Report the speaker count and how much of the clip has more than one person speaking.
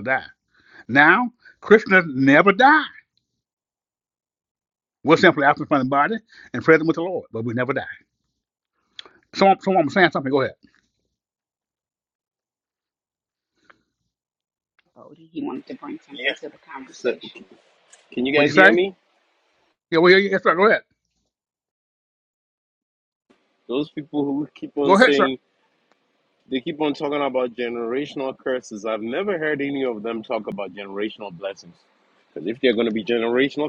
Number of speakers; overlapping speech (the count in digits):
3, about 4%